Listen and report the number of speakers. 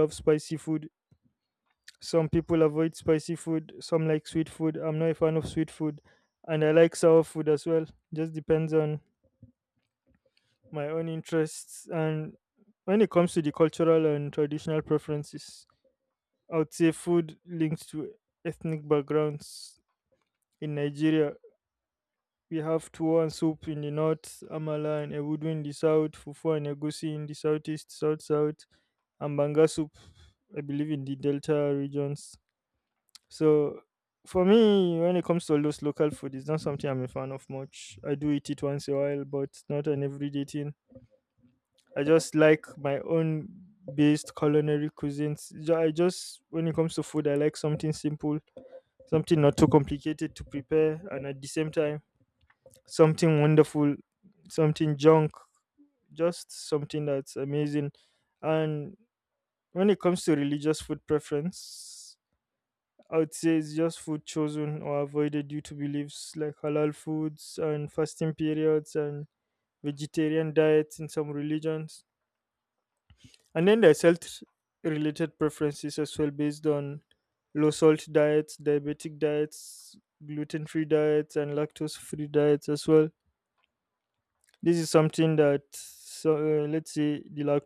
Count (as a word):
one